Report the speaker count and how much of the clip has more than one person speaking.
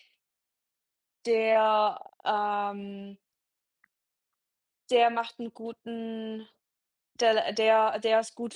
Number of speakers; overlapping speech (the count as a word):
one, no overlap